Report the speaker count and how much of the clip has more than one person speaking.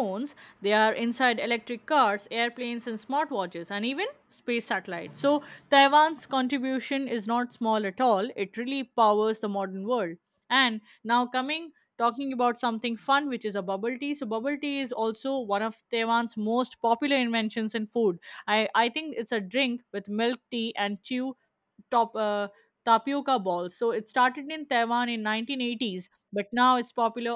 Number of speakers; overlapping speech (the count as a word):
one, no overlap